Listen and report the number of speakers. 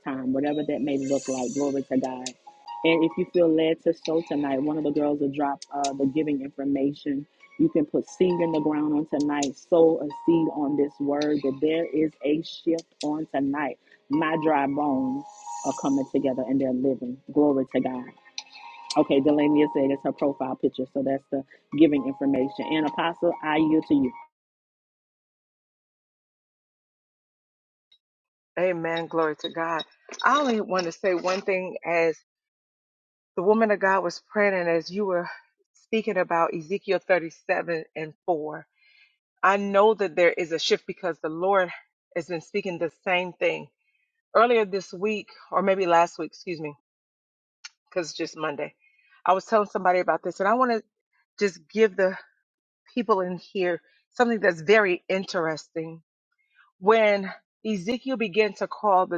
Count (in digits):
2